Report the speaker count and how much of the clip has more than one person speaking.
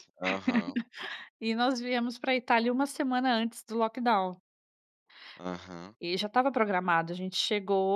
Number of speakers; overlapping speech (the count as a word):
two, no overlap